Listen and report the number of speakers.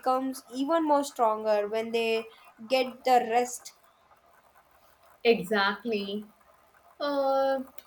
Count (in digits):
2